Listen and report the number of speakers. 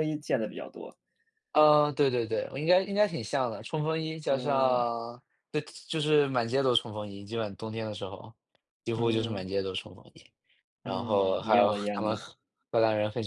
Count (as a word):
two